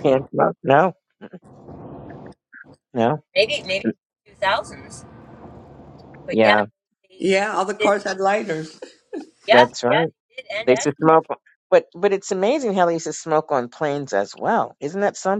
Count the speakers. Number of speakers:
three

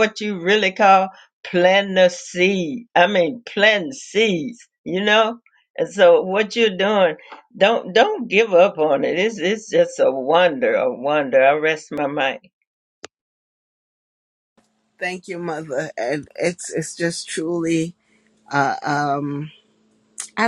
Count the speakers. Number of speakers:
two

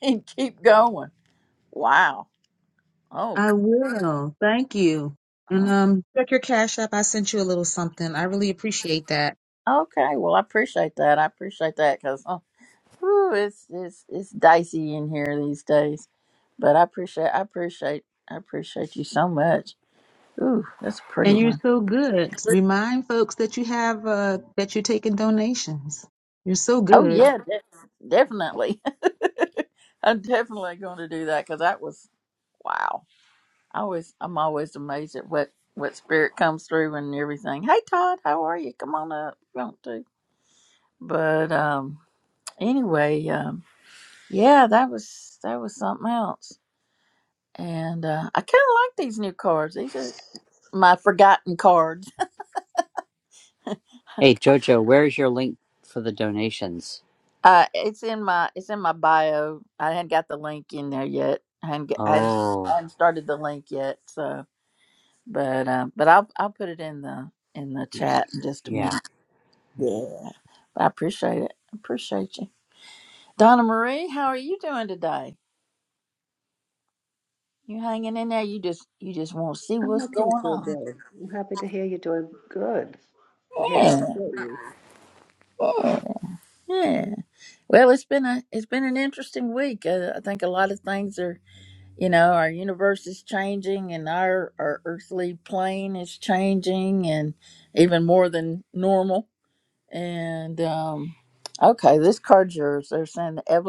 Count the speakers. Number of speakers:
four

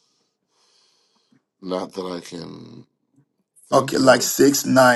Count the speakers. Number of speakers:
two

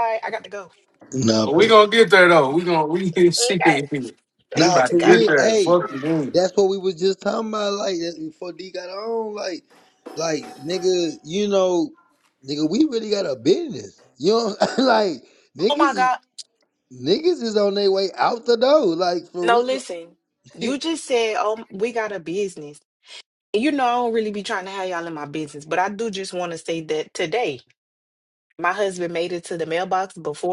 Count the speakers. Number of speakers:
three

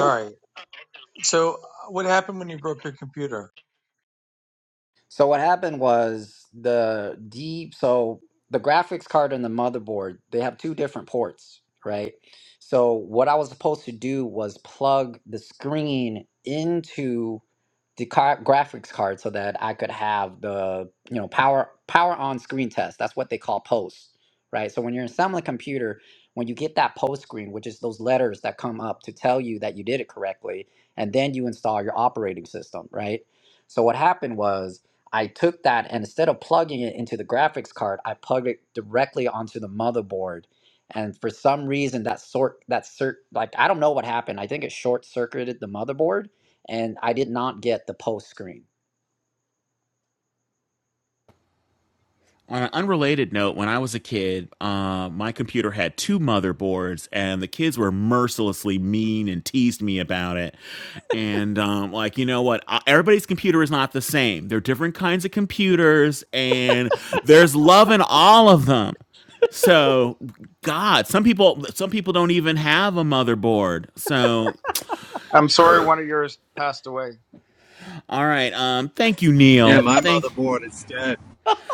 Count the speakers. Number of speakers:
five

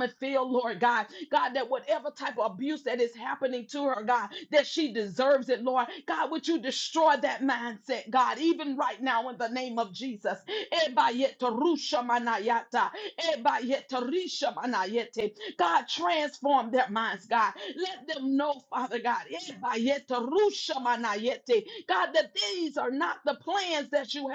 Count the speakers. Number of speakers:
one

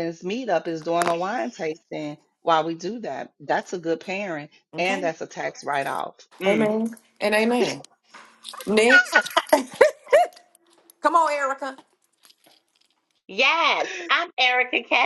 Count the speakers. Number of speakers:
three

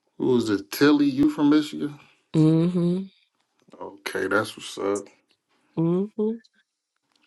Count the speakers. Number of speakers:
two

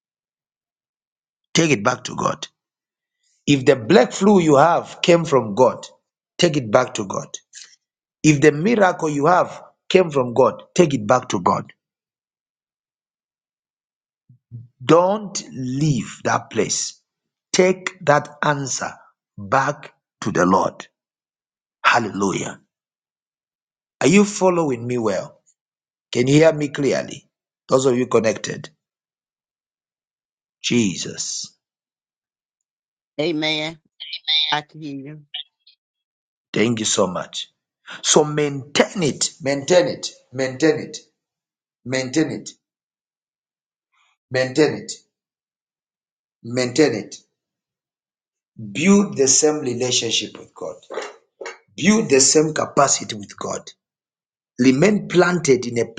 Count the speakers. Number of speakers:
two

